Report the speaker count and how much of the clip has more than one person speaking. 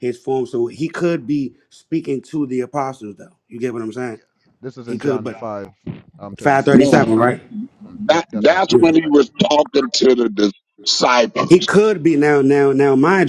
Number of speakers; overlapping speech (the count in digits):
3, about 19%